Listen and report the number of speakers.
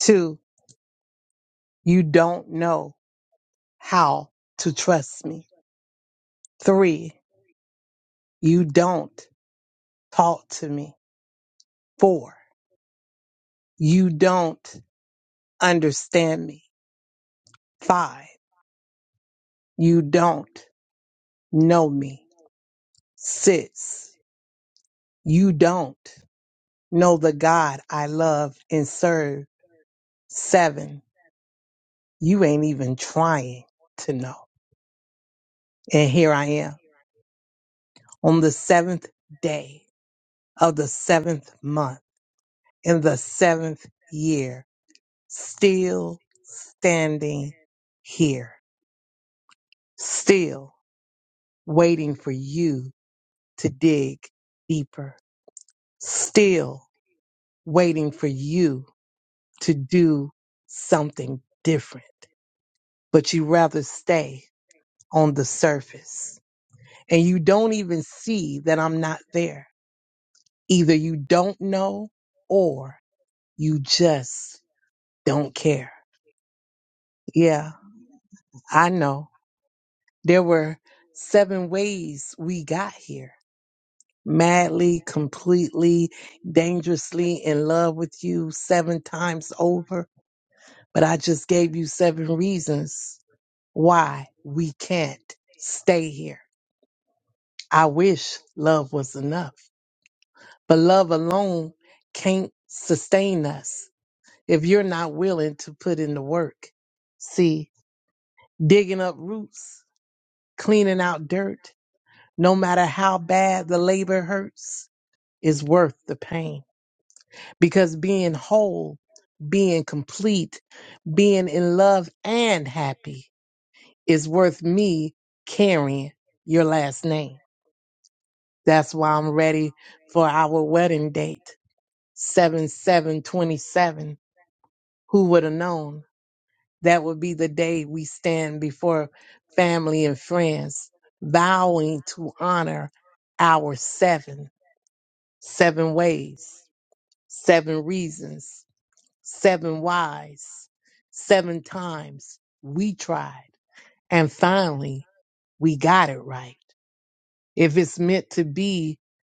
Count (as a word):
one